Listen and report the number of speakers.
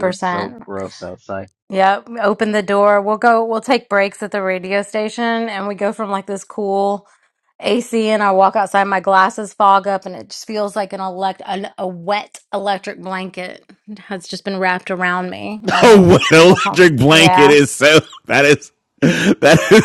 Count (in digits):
3